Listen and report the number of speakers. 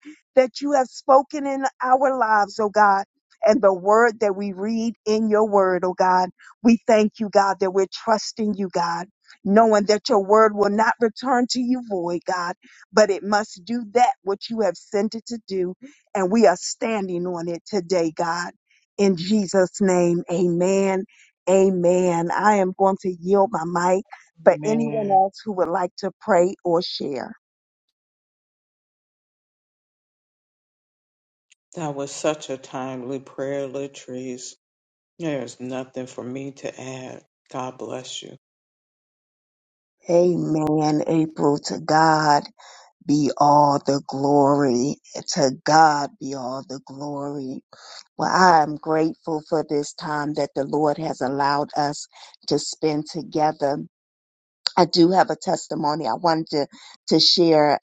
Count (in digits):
2